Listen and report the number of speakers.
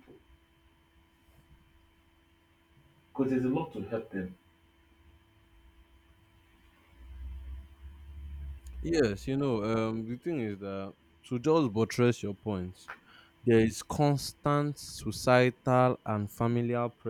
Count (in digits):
2